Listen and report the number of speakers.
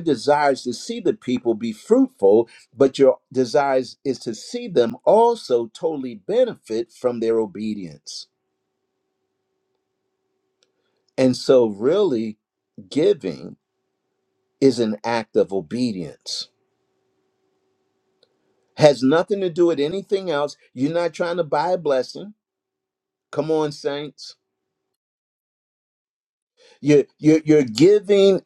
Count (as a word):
one